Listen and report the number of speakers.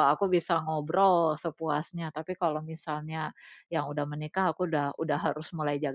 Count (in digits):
1